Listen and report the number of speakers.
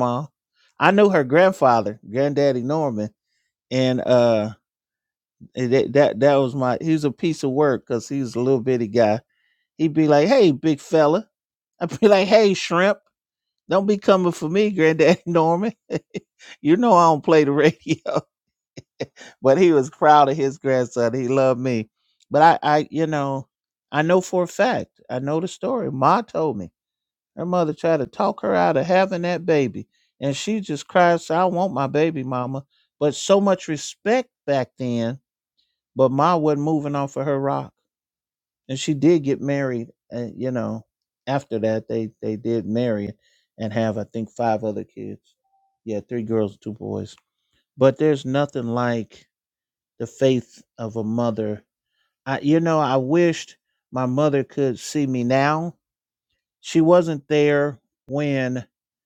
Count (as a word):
one